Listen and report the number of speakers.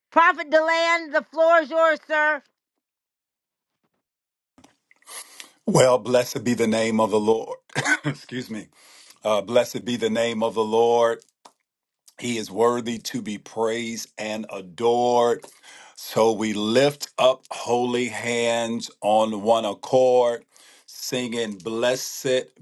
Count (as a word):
two